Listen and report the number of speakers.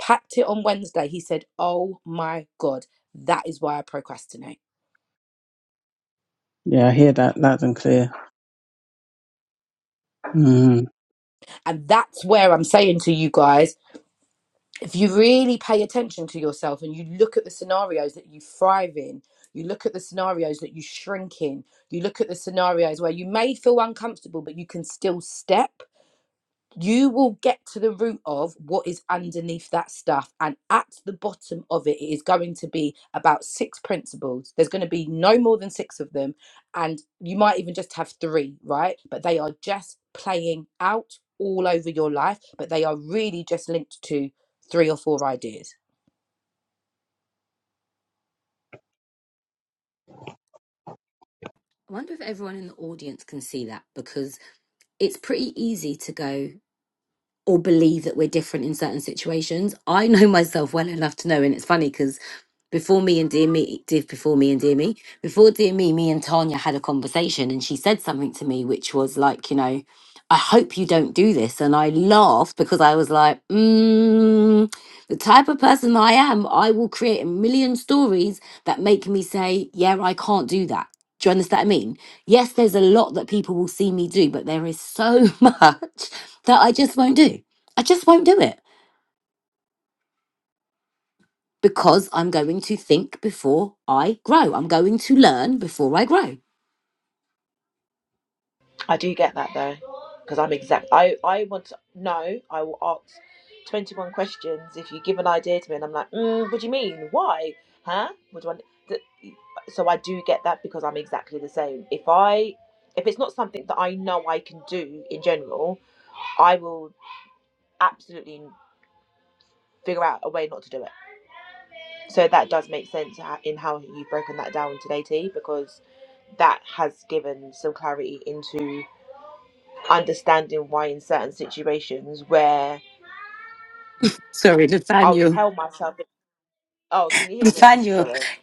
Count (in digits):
4